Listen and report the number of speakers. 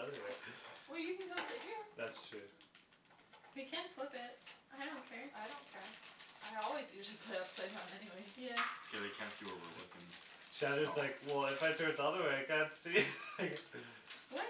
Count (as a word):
four